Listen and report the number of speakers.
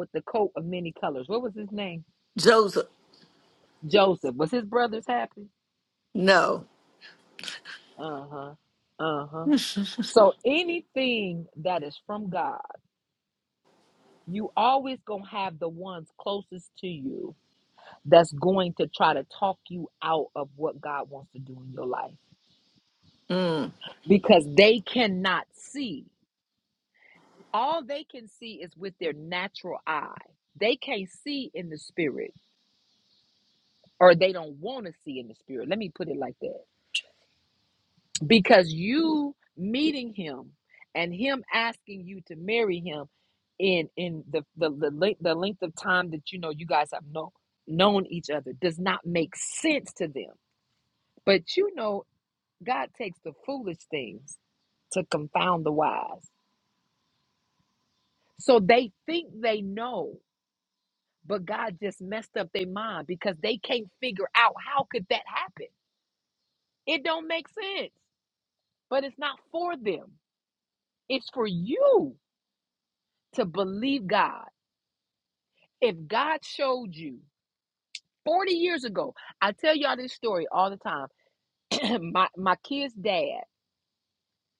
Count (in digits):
2